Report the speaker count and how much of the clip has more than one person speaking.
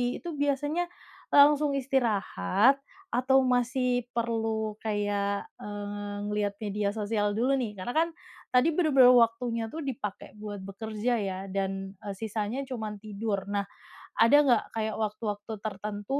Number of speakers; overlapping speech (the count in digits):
1, no overlap